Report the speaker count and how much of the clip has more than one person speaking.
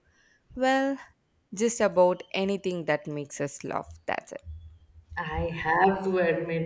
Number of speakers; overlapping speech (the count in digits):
2, no overlap